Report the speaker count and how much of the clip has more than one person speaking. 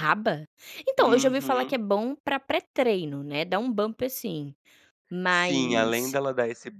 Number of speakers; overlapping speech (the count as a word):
two, about 23%